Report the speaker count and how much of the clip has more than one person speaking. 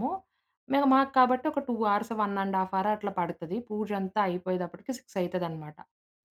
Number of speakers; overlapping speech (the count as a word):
one, no overlap